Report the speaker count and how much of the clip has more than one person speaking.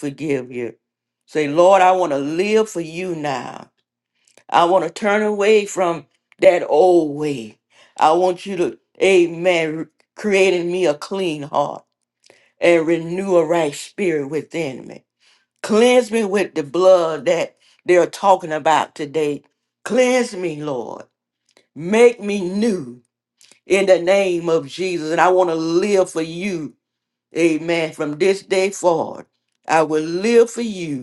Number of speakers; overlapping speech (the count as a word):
one, no overlap